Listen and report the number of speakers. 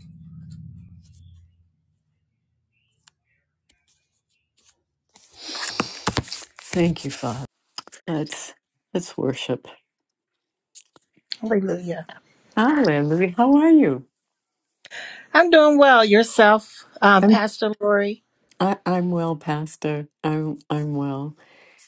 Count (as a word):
two